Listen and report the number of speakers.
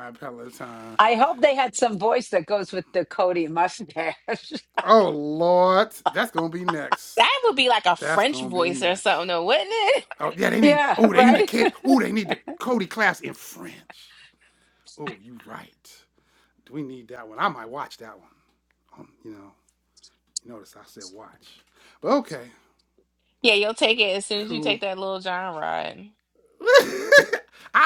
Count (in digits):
3